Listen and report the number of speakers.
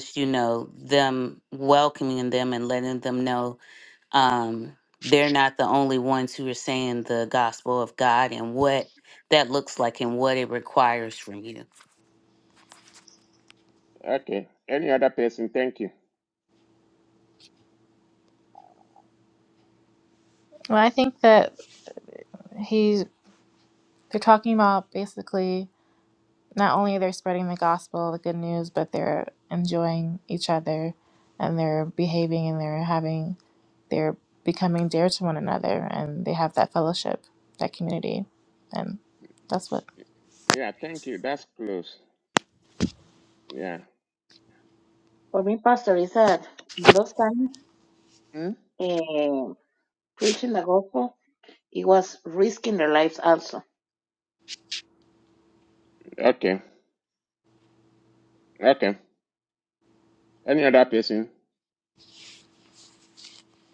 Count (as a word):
four